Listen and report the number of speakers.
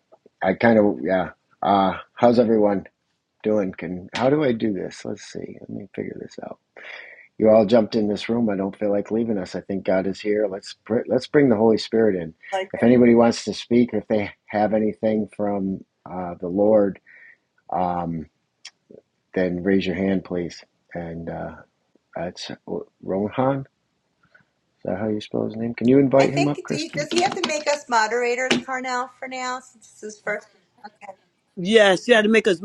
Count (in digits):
3